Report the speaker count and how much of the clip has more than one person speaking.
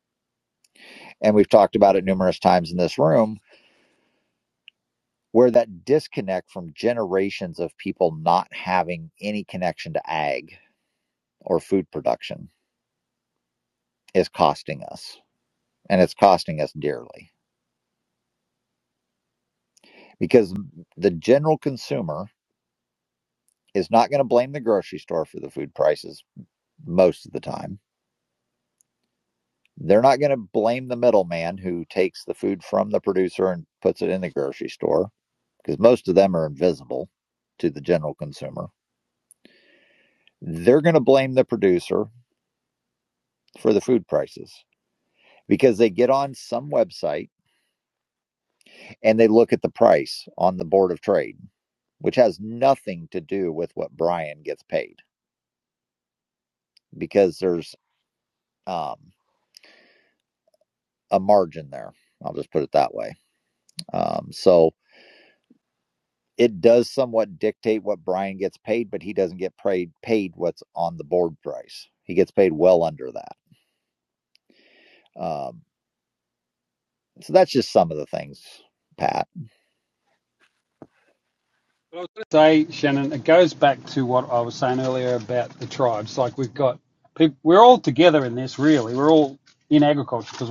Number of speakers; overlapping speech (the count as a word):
two, no overlap